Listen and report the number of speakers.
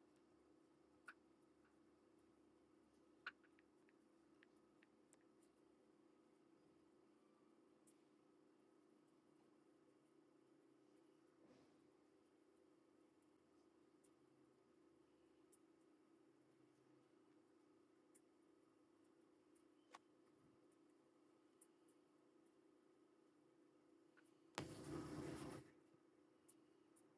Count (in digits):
0